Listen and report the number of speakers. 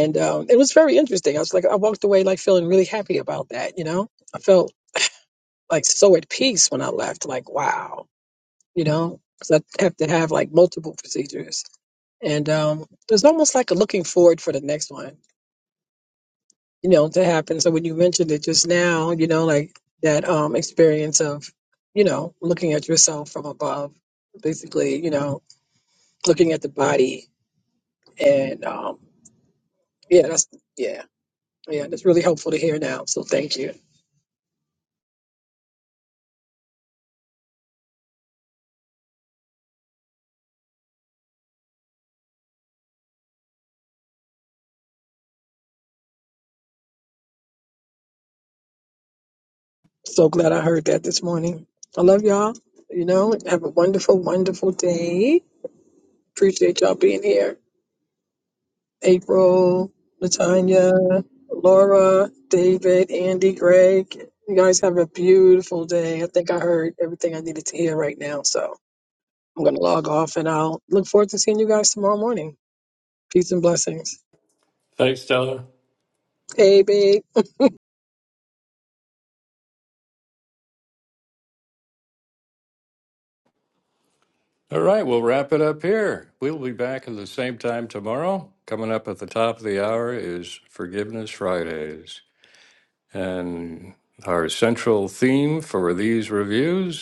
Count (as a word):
two